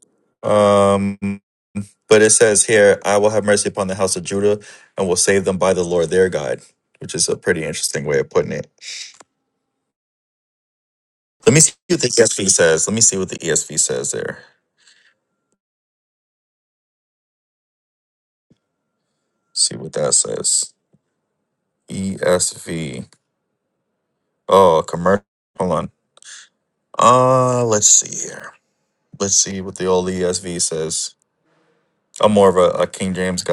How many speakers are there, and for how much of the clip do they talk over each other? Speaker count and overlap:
1, no overlap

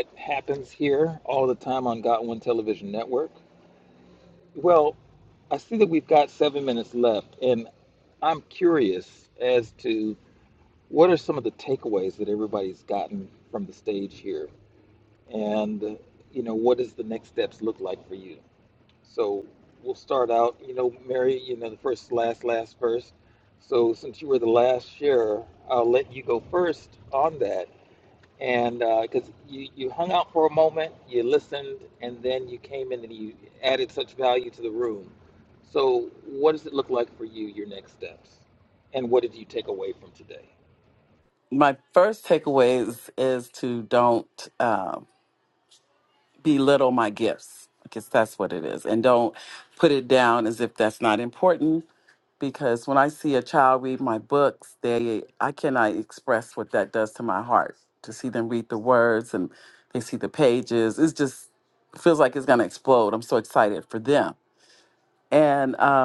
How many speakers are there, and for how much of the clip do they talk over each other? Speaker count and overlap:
2, no overlap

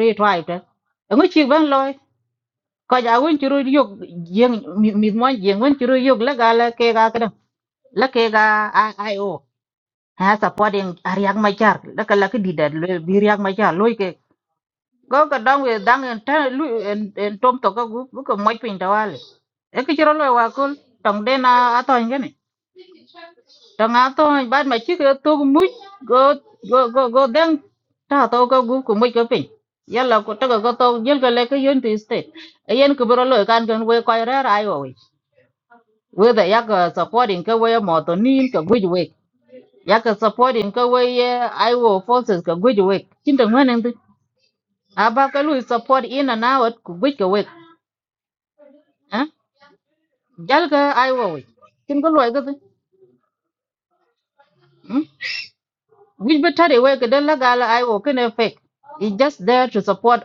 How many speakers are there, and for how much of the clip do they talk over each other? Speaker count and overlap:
1, no overlap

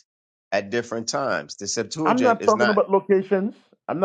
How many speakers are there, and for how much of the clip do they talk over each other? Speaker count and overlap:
2, about 18%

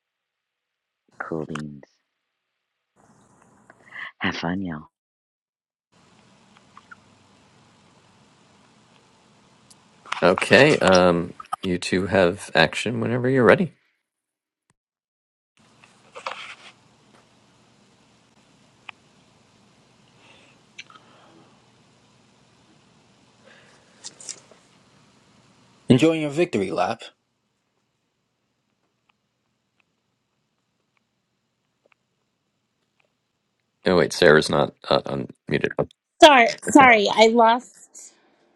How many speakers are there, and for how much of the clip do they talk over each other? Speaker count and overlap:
4, about 1%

